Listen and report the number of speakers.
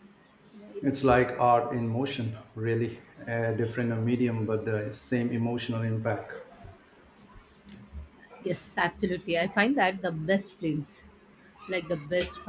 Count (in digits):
2